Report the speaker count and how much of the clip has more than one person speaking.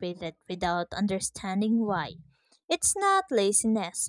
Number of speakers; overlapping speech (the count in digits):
1, no overlap